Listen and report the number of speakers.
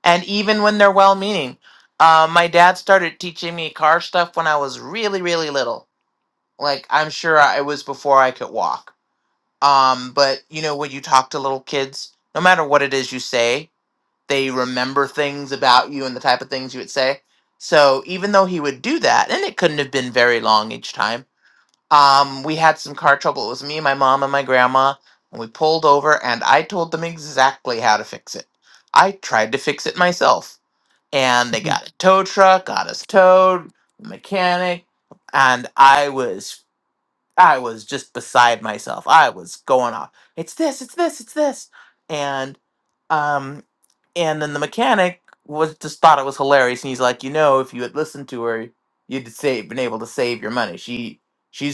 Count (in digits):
1